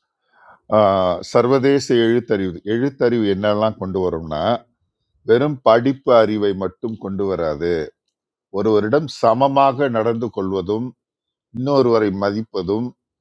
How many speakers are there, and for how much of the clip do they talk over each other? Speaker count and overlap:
one, no overlap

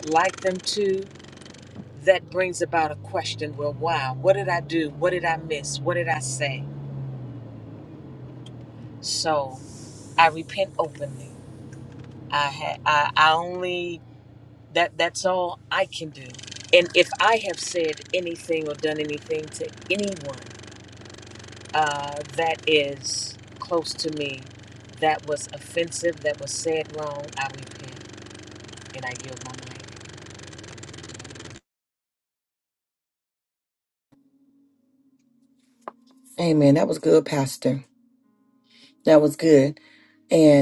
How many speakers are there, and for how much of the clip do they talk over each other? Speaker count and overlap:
two, no overlap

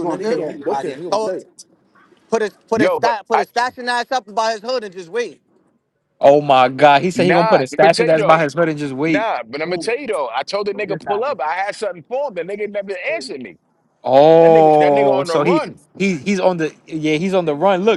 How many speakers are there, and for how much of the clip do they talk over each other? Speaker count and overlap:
four, about 21%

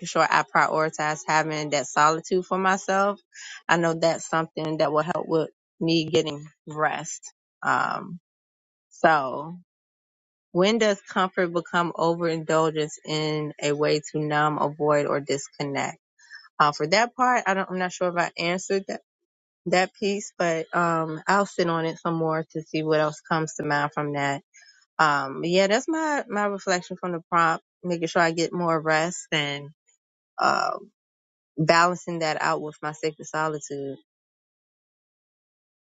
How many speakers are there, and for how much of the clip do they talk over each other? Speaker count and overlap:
one, no overlap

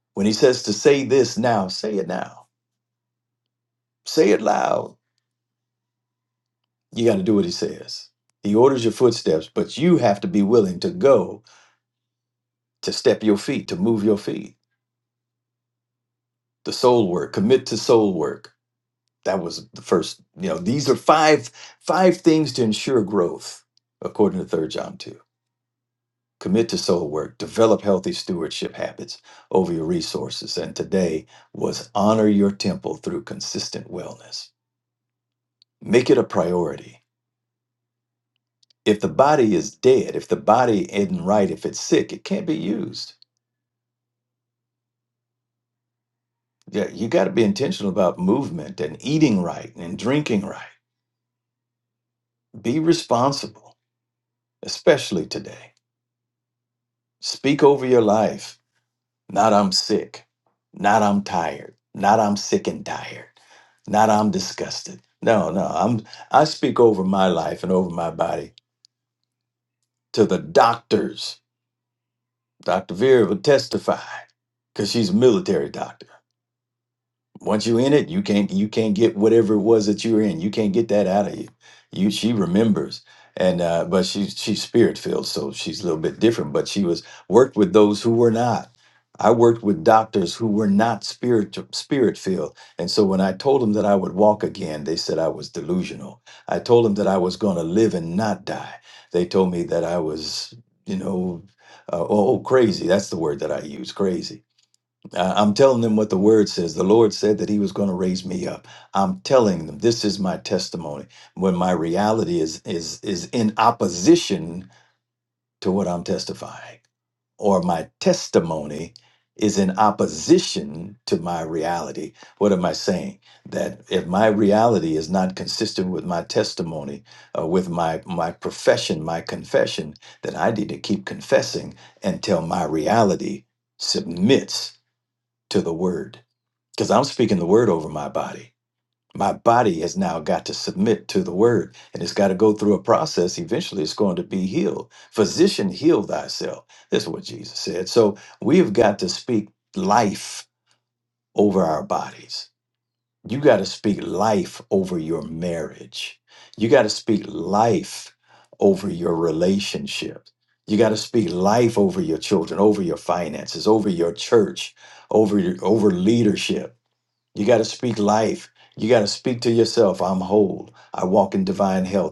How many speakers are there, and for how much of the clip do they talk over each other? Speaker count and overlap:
one, no overlap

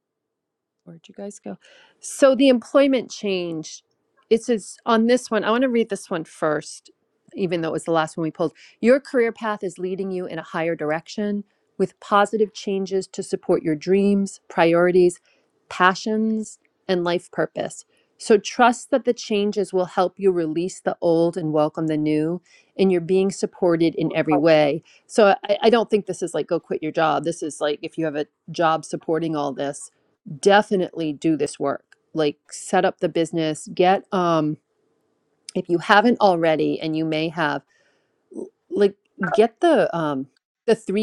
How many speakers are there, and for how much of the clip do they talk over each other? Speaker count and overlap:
one, no overlap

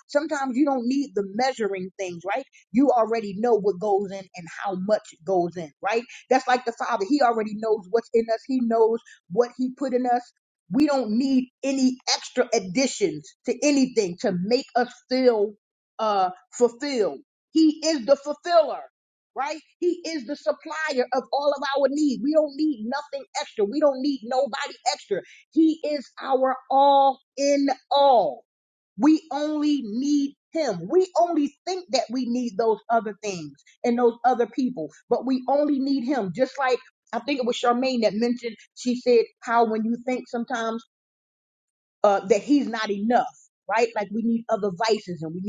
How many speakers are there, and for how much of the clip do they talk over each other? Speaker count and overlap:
one, no overlap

